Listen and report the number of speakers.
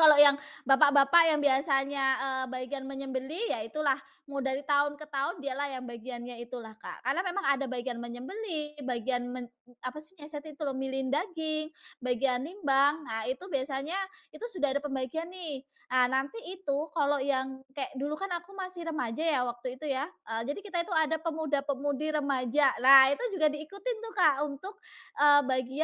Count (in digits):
1